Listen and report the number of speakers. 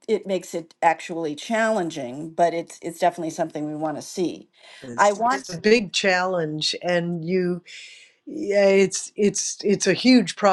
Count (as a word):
two